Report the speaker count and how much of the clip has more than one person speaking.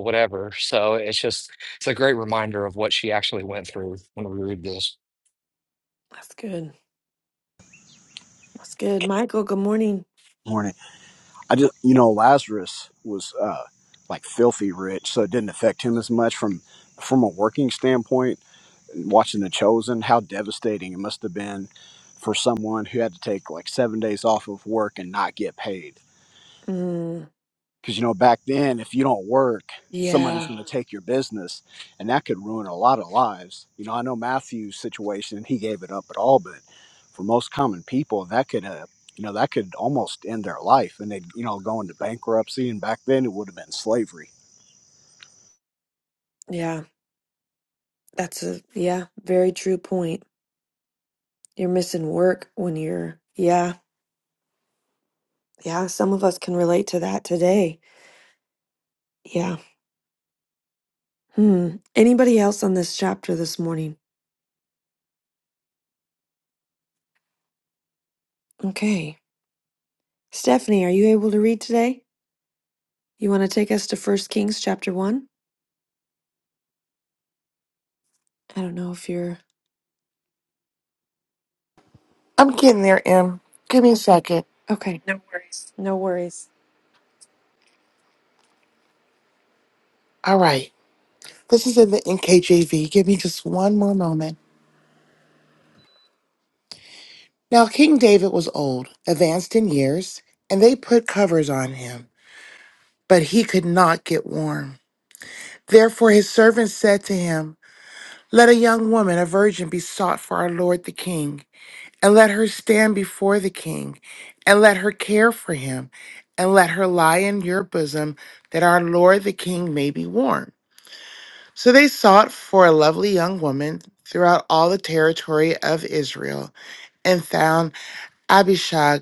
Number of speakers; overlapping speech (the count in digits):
4, under 1%